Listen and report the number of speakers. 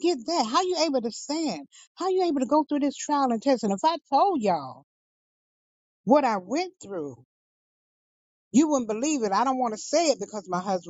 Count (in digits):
1